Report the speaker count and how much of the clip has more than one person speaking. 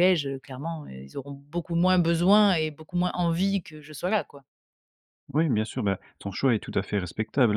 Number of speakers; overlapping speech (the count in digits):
2, no overlap